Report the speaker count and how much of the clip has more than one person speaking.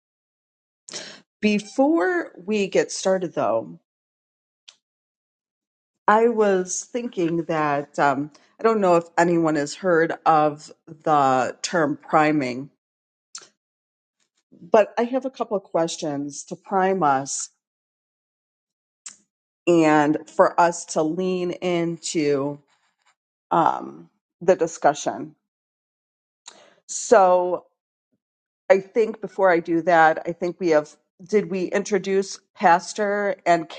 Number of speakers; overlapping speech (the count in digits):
1, no overlap